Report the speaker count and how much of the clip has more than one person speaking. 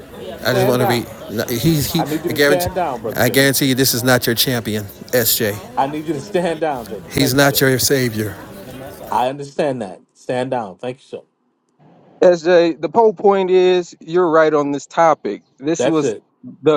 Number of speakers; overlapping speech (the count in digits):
3, about 14%